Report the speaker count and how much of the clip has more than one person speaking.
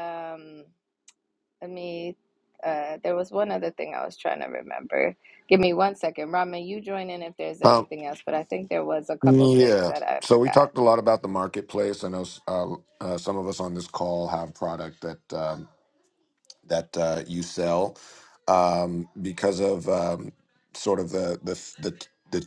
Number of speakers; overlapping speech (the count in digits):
2, about 7%